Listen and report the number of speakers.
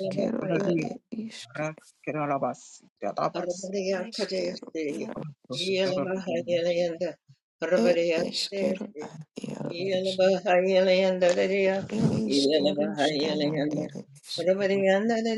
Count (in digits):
3